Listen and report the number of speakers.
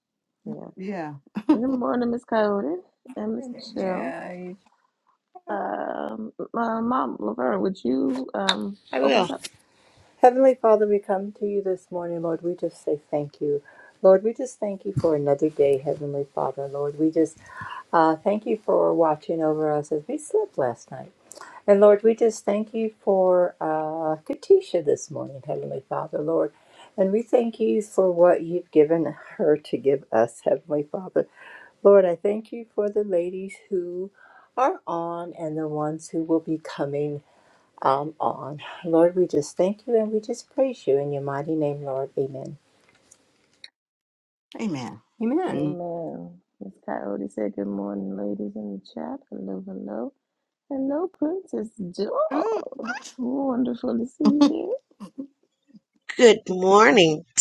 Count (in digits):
4